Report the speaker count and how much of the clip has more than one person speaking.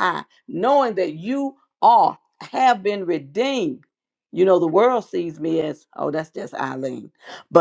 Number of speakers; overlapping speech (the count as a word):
one, no overlap